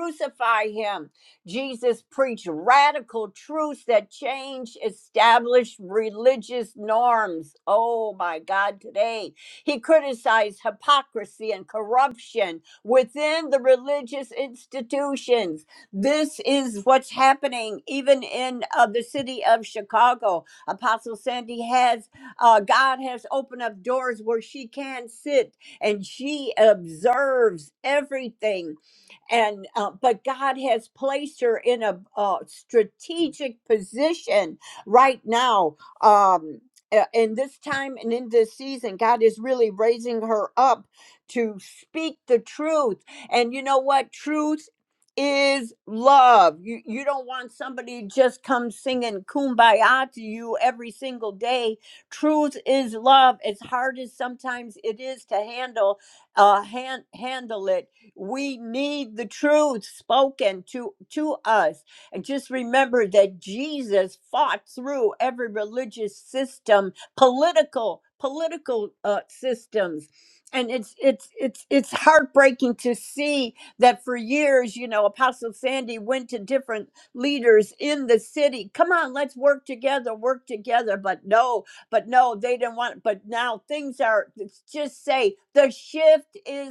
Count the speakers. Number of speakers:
1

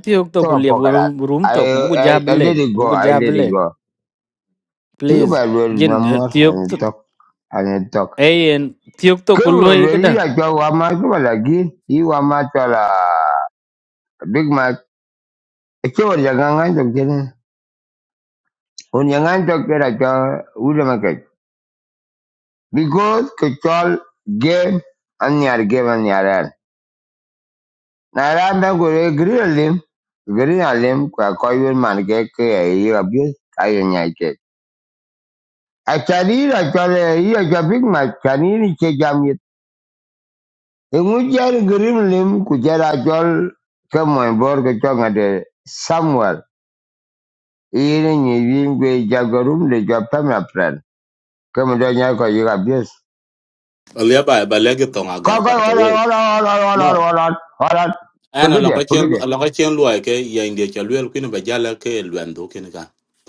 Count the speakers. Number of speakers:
3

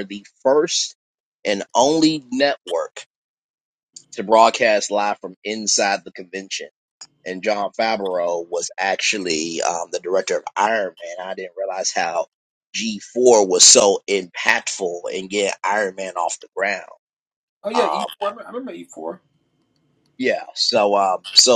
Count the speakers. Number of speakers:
2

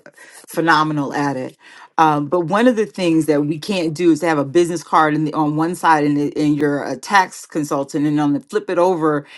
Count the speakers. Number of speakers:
1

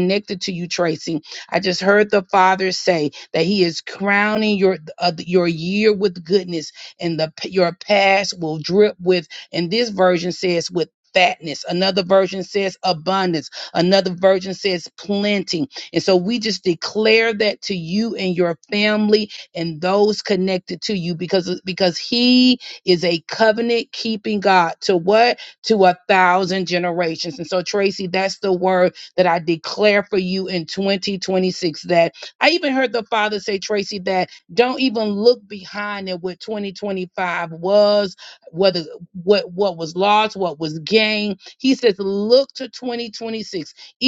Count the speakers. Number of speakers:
1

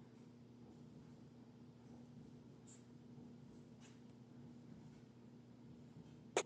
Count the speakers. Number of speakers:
0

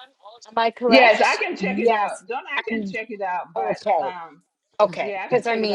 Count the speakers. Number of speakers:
2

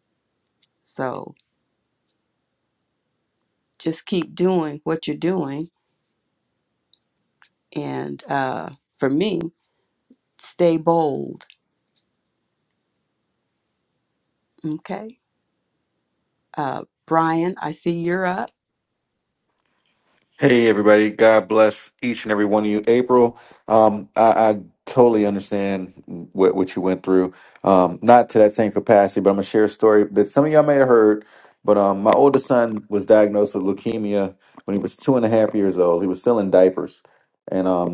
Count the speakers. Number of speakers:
2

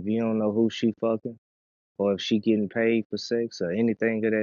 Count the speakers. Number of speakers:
1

